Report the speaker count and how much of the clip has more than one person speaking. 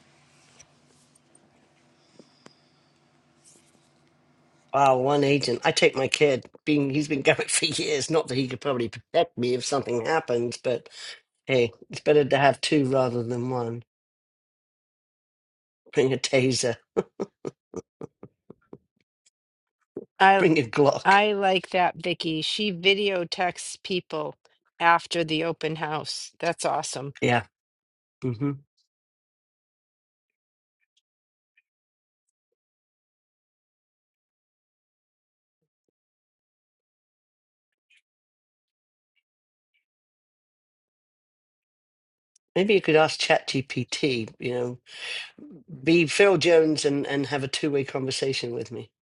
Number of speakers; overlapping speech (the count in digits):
2, under 1%